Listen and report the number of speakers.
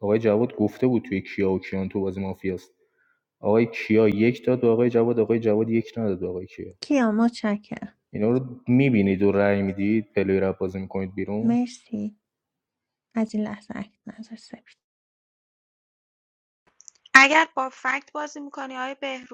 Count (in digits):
3